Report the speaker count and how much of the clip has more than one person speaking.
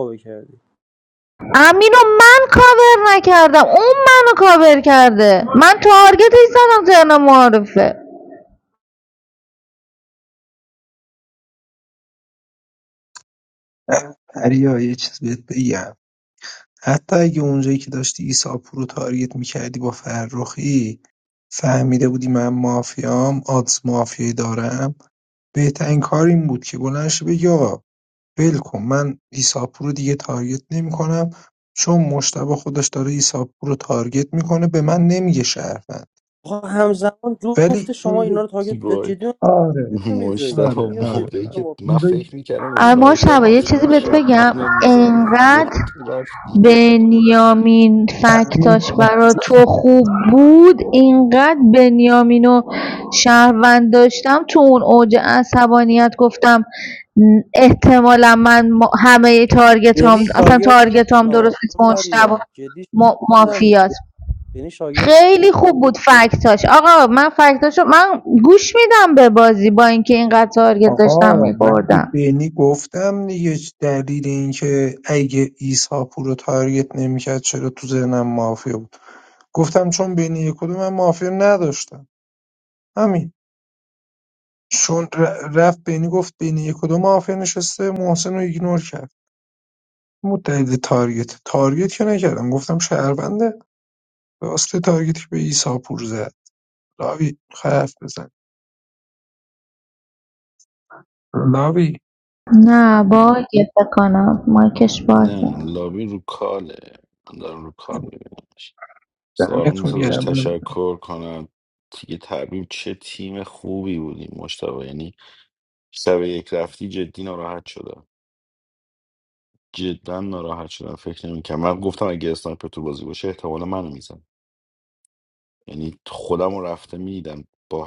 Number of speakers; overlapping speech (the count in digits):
4, about 10%